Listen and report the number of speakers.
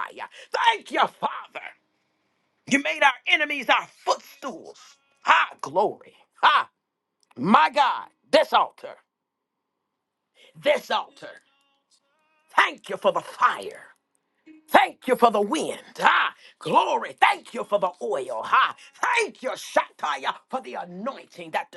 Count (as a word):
one